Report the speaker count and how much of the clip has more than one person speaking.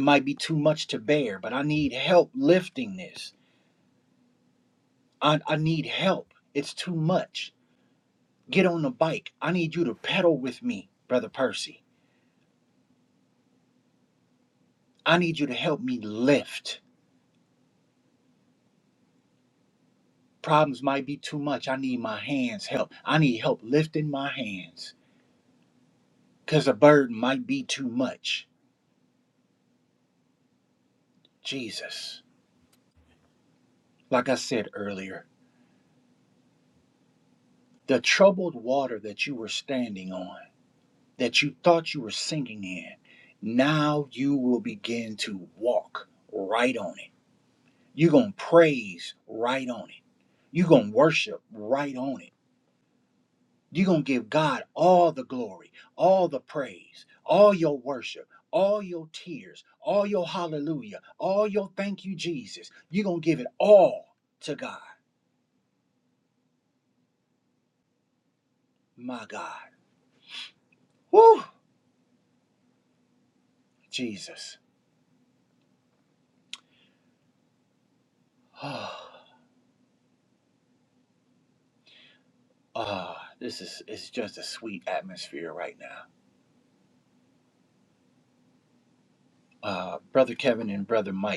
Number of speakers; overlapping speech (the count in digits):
1, no overlap